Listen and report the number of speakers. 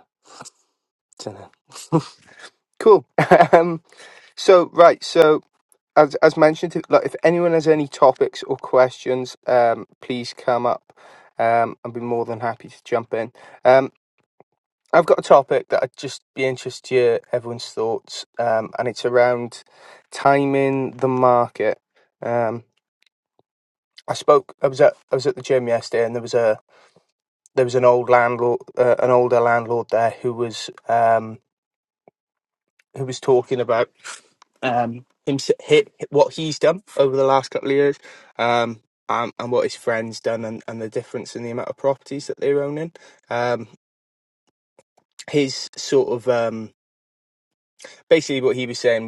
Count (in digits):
1